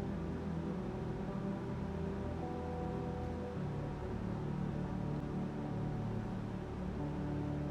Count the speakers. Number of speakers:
0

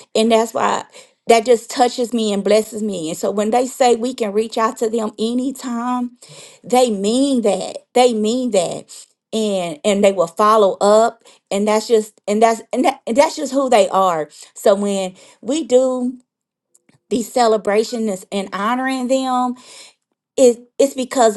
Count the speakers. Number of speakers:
1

